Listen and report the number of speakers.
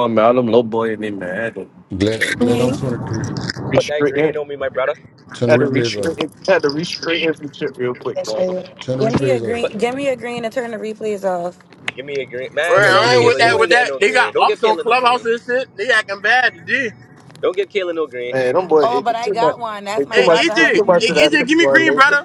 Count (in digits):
5